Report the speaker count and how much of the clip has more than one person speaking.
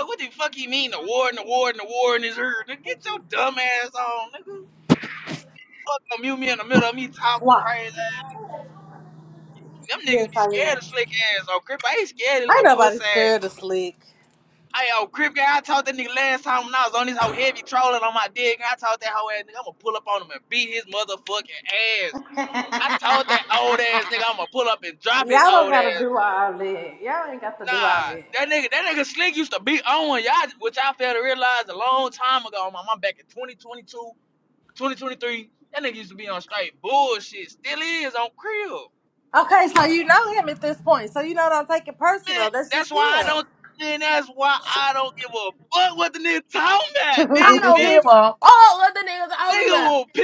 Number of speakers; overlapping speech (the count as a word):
three, about 9%